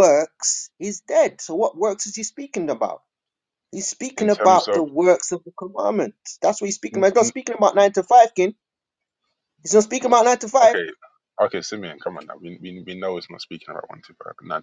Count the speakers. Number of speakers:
2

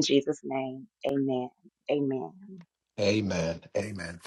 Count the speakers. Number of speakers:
2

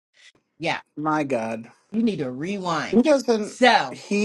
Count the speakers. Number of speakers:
2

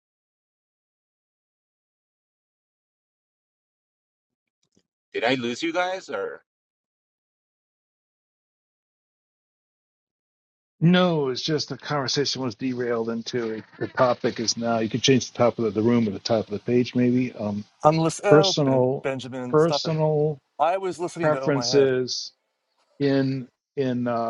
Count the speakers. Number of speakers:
3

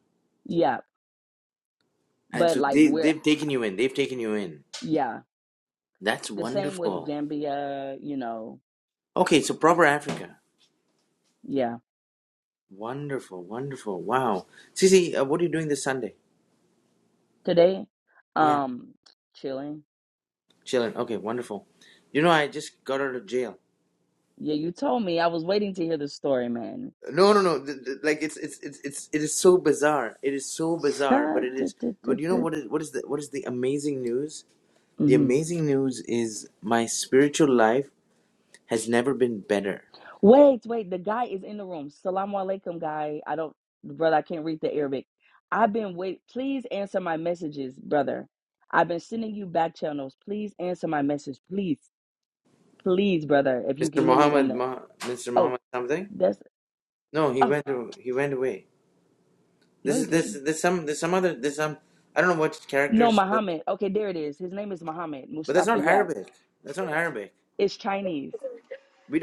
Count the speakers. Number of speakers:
2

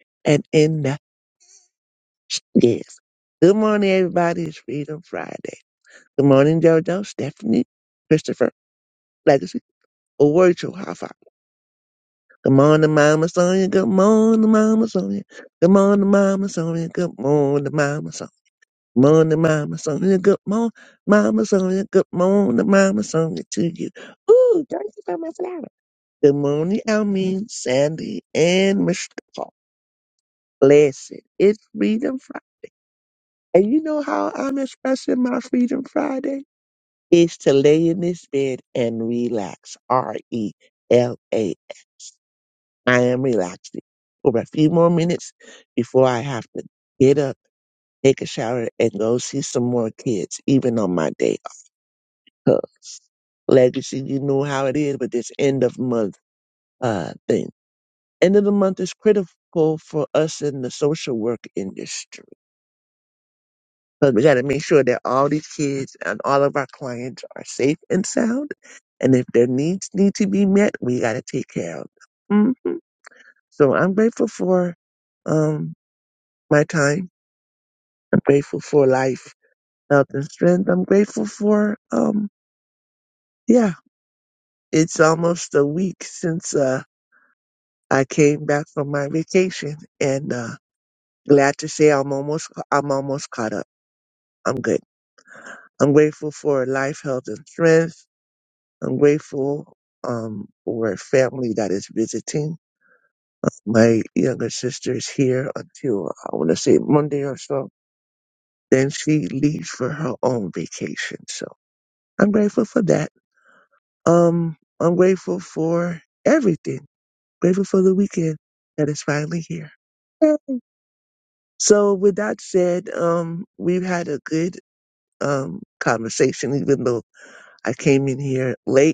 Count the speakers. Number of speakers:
1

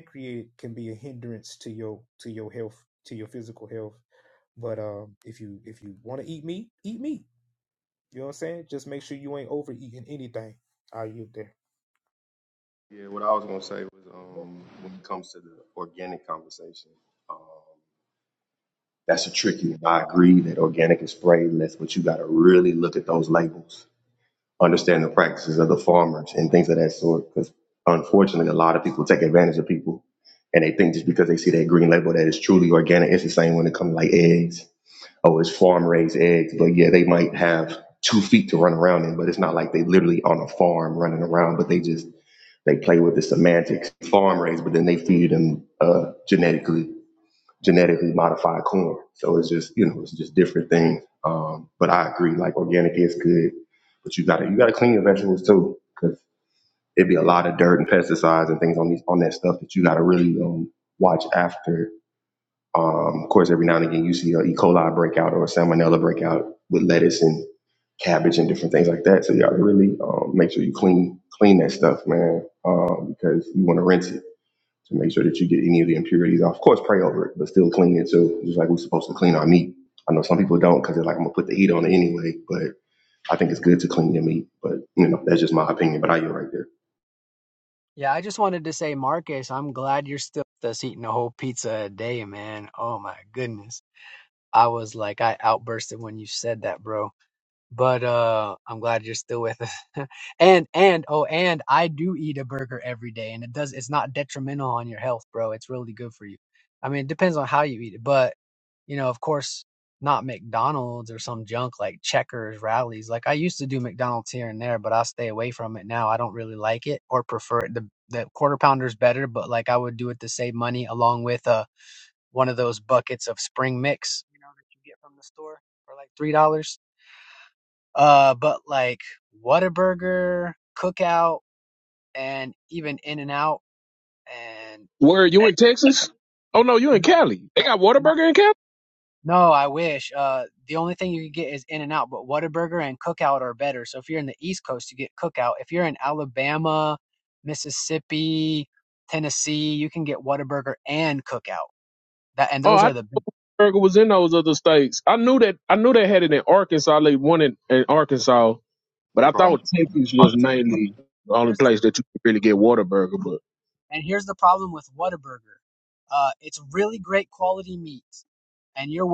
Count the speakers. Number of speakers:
4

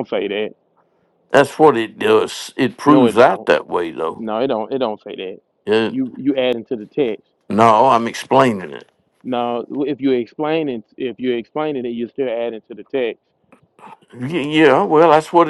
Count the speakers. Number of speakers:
2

